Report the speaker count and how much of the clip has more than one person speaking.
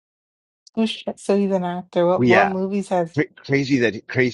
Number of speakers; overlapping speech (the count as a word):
two, about 9%